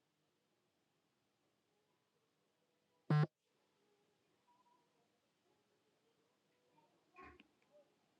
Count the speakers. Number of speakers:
0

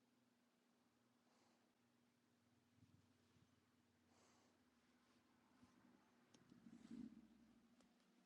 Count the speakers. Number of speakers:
0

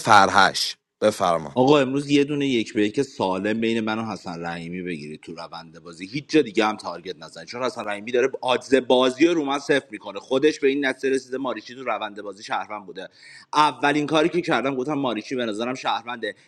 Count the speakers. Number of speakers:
2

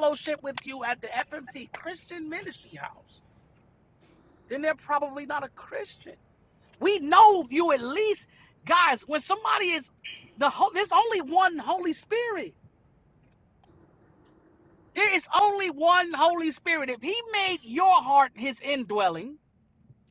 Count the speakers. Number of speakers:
1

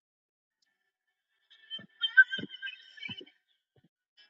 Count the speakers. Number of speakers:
0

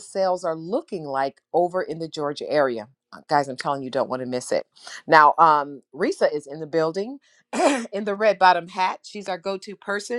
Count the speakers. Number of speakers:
1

